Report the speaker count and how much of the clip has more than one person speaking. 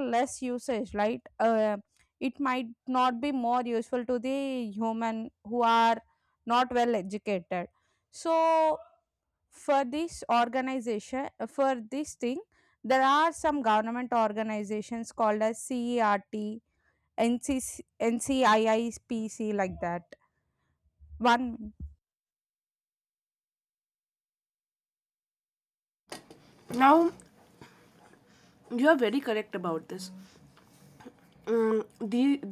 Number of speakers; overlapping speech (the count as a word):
two, no overlap